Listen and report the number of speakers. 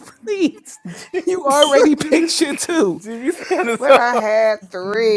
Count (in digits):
3